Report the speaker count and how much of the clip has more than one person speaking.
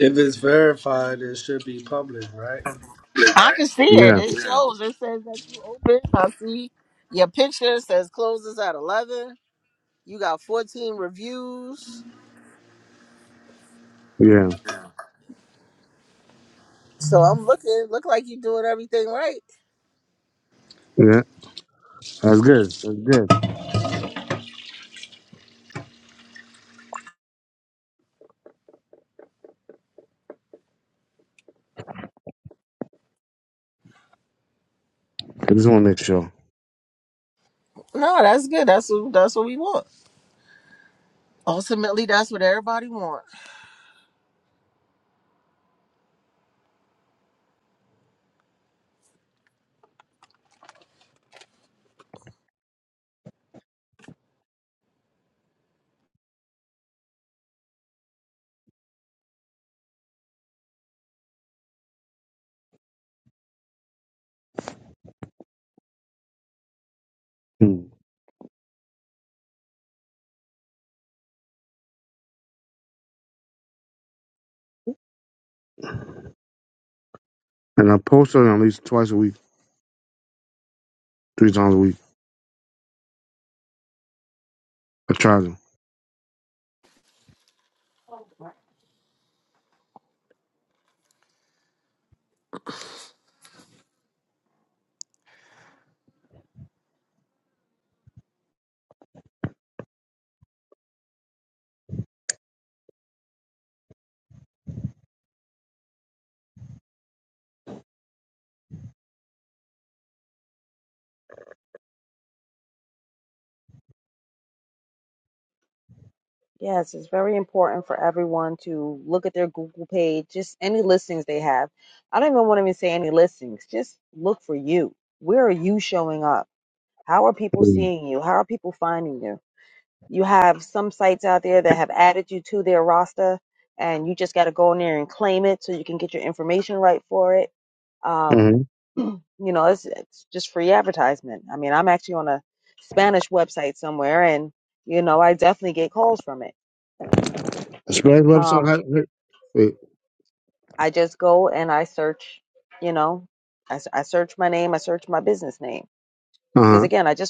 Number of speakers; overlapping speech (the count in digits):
4, about 1%